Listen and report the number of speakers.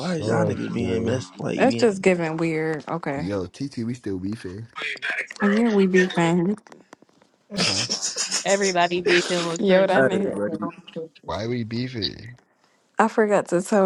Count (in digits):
4